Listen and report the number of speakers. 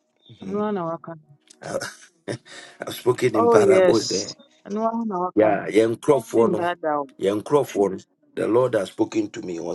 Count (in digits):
2